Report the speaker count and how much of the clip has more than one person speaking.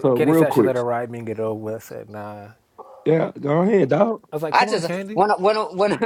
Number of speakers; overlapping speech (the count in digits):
3, about 23%